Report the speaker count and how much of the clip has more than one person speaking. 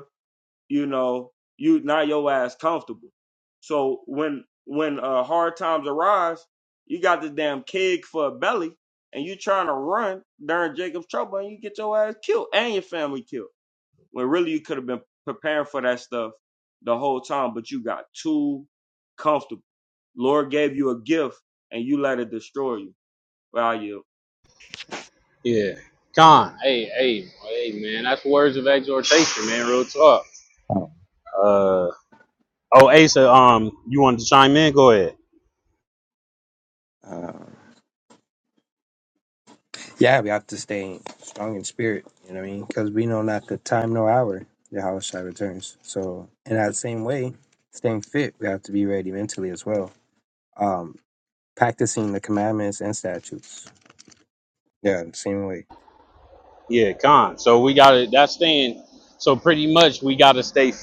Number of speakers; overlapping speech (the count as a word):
three, no overlap